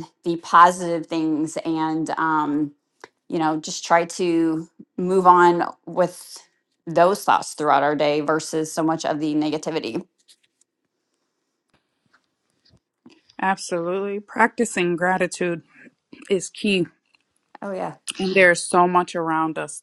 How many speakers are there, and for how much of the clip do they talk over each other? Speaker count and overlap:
two, no overlap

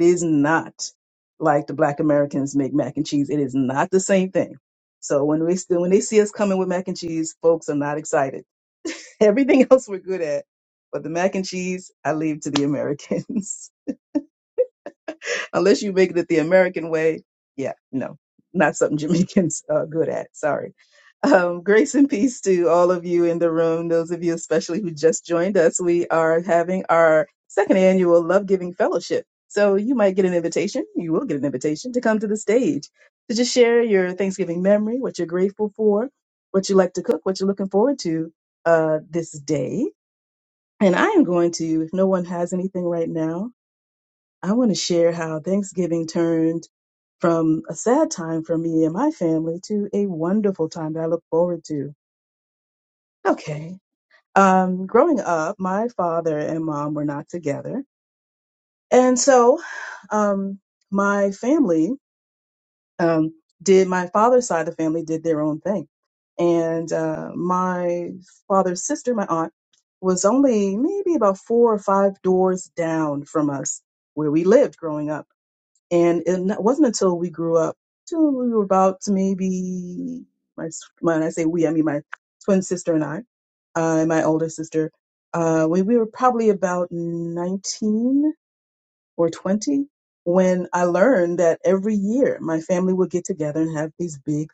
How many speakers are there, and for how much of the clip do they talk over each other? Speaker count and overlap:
one, no overlap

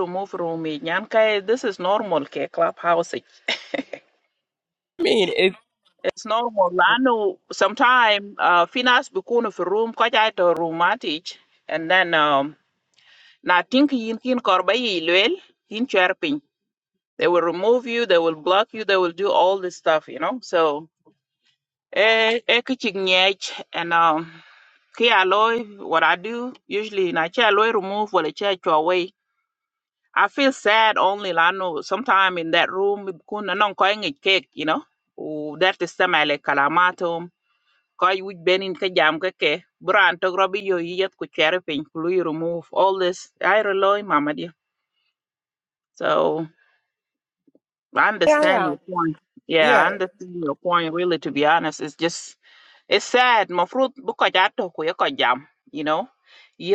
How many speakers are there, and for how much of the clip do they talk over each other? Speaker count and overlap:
two, about 1%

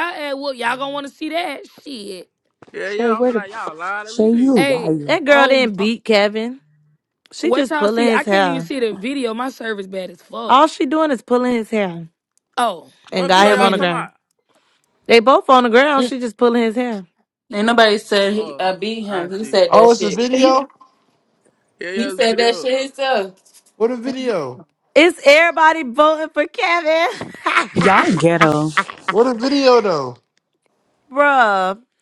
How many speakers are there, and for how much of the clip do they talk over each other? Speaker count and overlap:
six, about 19%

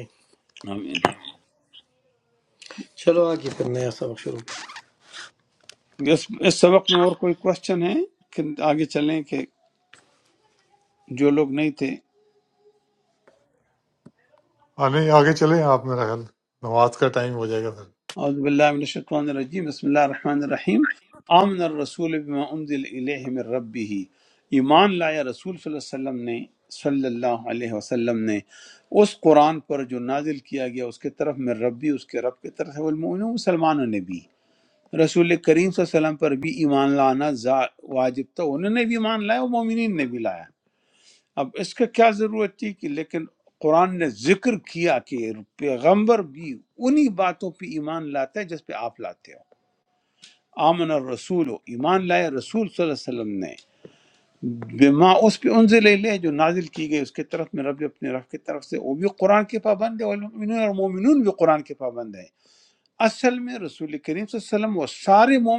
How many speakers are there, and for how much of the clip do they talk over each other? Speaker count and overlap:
three, no overlap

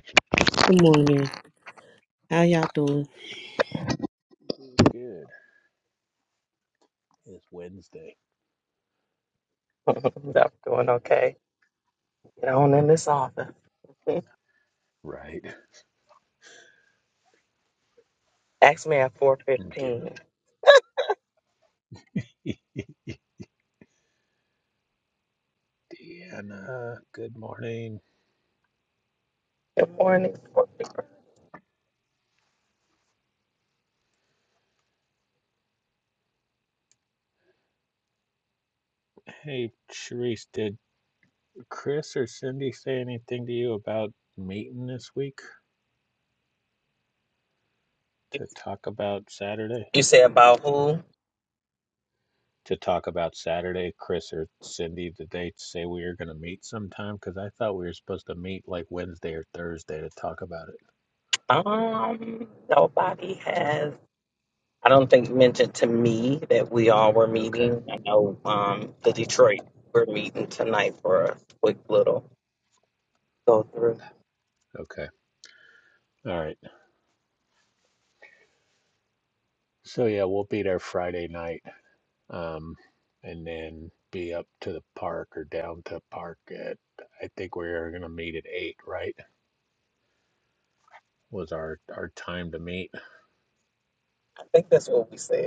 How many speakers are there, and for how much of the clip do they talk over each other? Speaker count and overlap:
three, about 1%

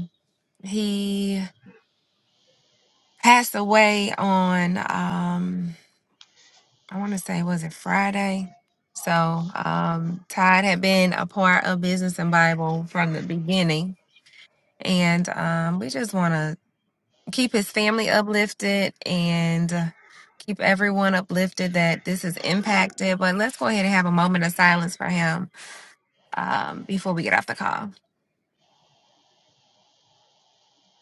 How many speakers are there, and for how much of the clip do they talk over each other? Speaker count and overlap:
one, no overlap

